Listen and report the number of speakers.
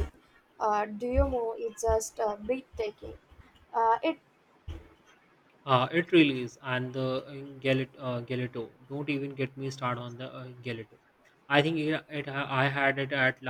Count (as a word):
two